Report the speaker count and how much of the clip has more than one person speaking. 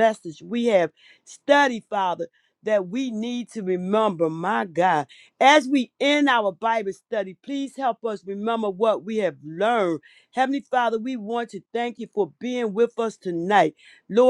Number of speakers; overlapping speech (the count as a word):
one, no overlap